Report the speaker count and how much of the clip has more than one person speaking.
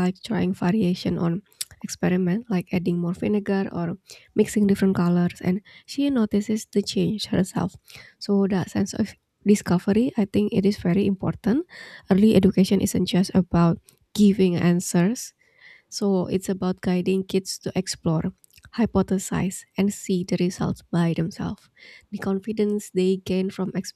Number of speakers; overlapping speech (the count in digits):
1, no overlap